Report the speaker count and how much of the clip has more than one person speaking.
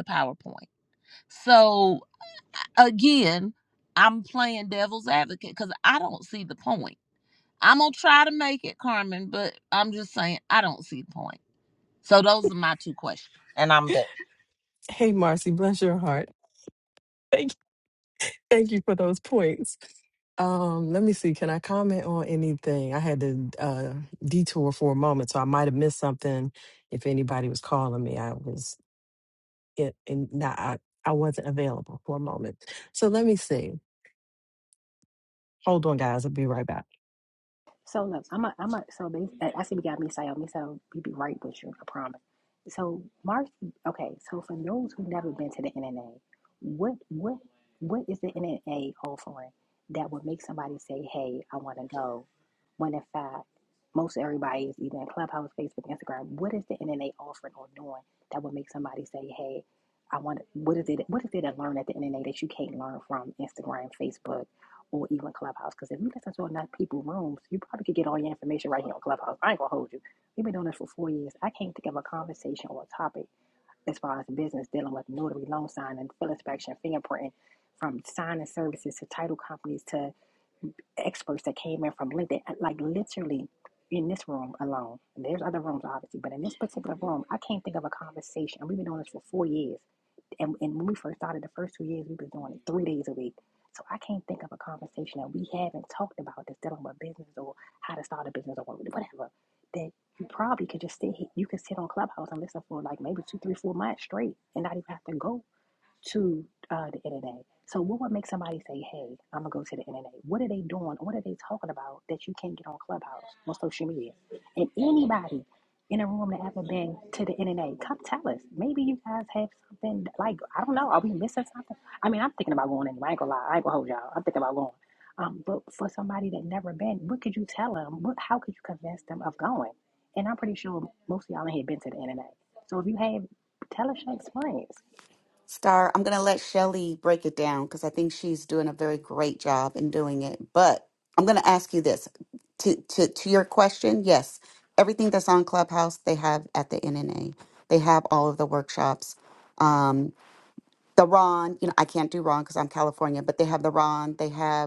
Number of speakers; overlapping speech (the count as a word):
four, no overlap